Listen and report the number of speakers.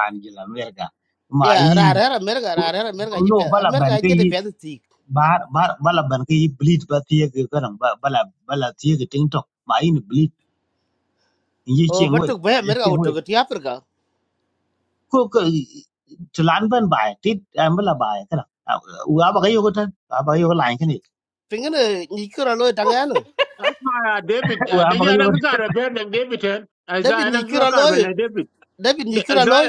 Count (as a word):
three